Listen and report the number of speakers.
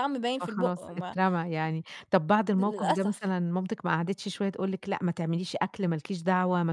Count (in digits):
2